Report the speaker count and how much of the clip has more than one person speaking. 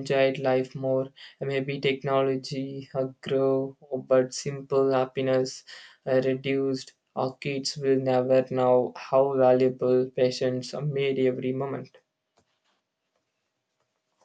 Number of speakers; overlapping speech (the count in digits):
1, no overlap